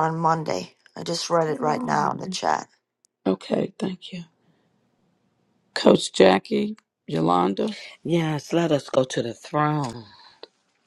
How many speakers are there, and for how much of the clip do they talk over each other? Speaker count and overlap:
3, about 6%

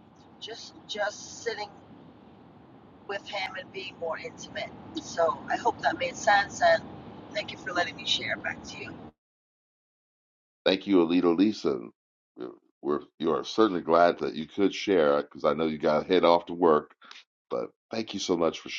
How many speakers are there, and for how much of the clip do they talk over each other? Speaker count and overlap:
2, no overlap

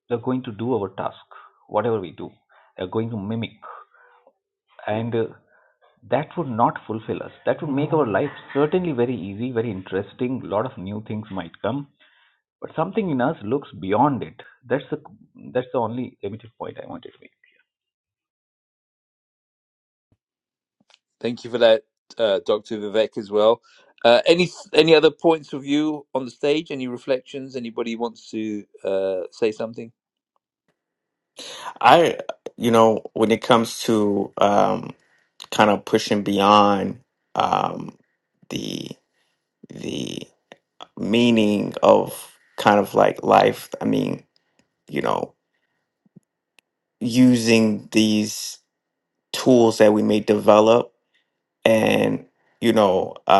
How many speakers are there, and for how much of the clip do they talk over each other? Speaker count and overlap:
3, no overlap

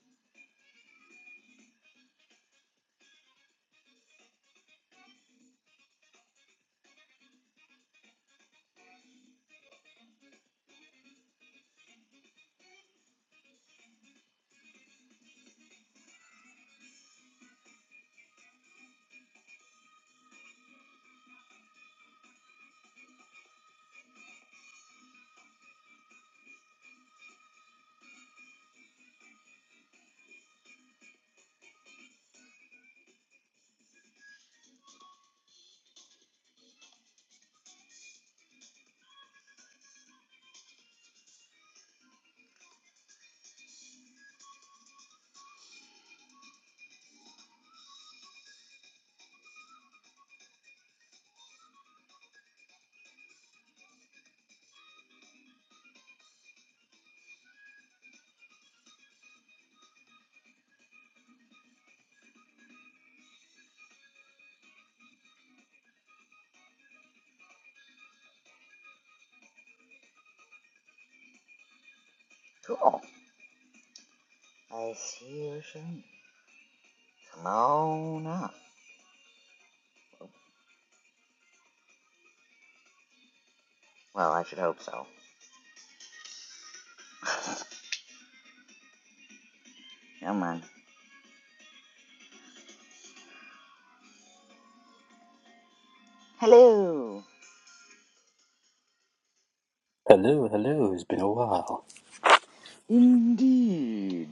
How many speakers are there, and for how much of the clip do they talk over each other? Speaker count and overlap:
2, no overlap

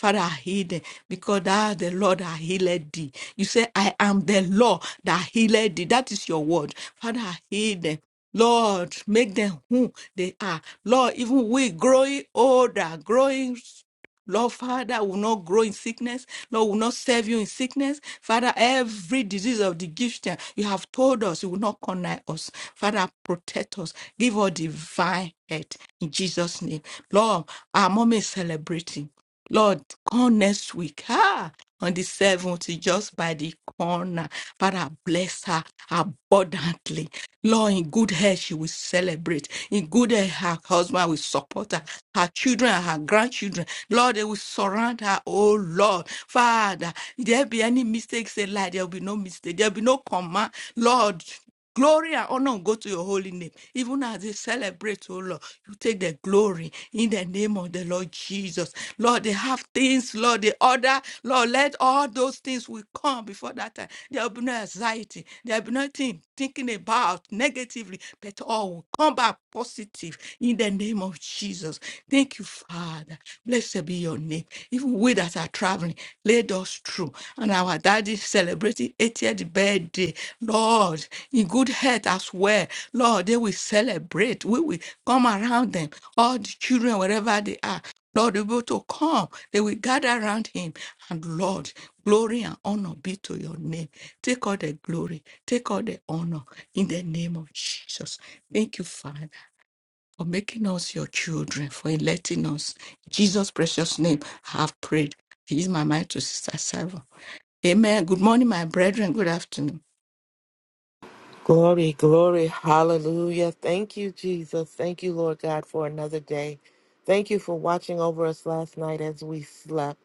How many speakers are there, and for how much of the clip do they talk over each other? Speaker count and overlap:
2, no overlap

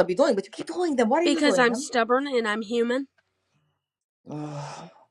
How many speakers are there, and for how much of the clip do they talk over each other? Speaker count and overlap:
2, about 11%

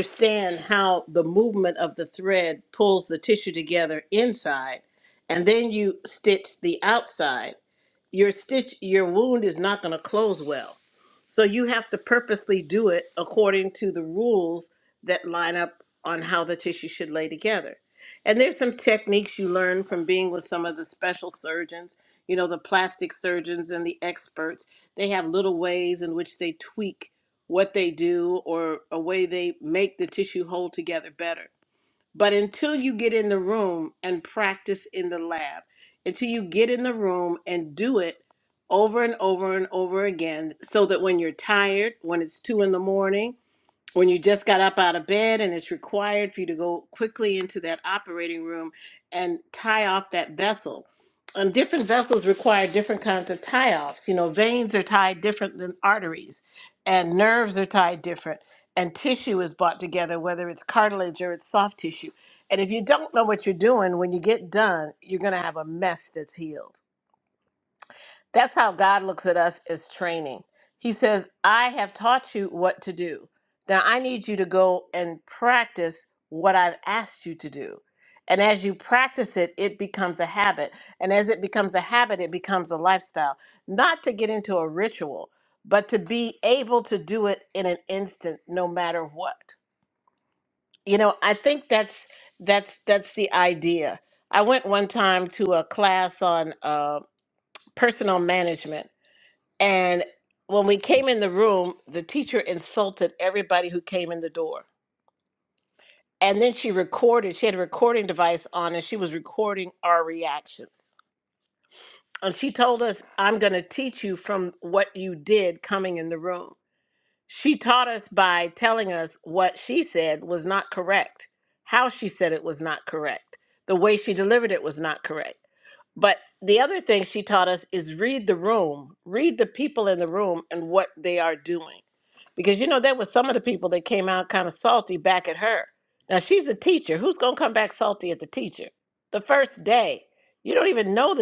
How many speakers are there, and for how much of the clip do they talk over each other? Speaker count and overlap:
1, no overlap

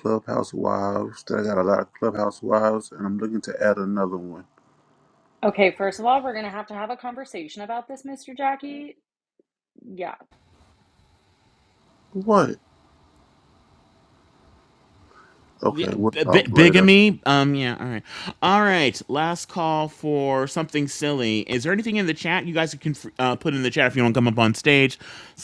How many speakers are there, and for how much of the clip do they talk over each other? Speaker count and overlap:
3, about 4%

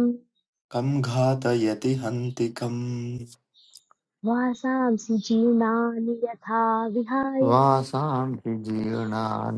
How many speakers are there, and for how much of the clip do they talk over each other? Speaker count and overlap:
3, about 1%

